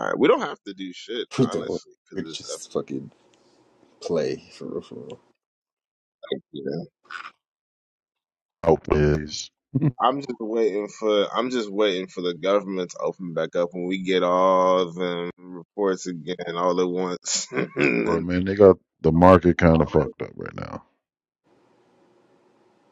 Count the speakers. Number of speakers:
three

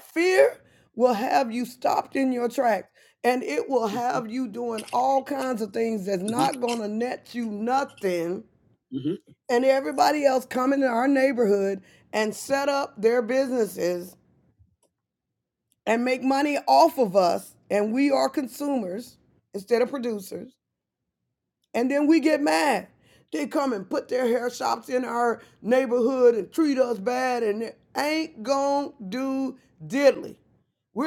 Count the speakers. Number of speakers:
one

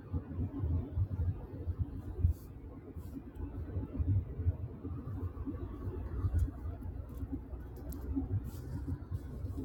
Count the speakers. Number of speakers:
zero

